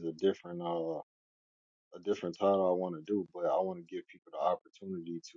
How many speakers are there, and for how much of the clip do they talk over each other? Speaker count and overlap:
one, no overlap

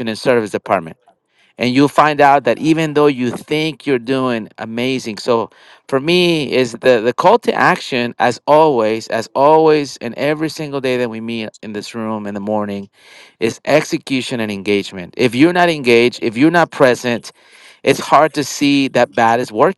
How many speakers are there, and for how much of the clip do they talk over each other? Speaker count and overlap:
one, no overlap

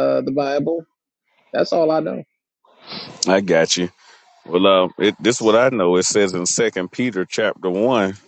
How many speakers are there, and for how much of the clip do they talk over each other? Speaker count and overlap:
two, no overlap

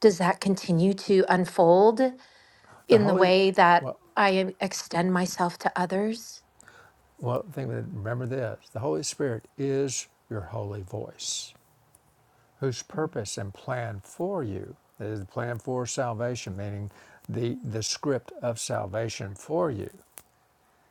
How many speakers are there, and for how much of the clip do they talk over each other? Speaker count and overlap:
two, about 2%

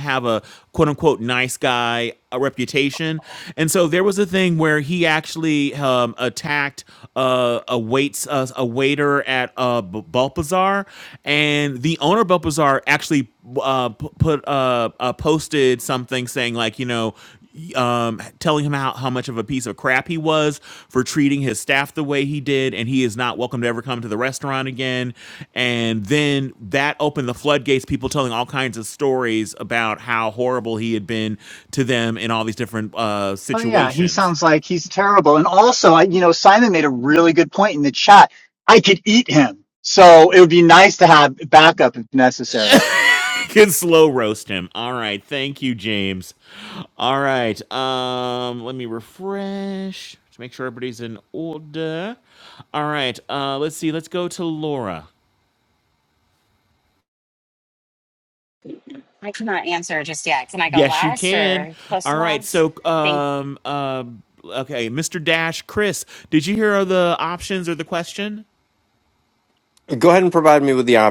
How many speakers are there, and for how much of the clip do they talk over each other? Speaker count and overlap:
four, about 3%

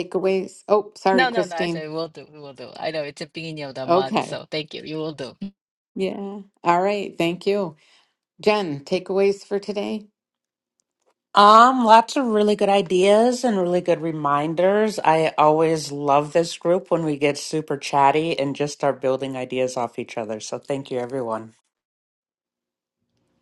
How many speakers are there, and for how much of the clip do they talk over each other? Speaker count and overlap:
three, about 5%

